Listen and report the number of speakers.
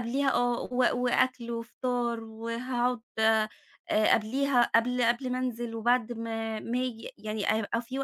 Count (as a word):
one